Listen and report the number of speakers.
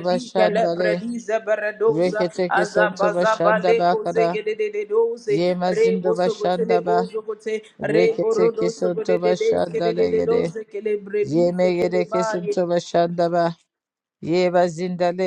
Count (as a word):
two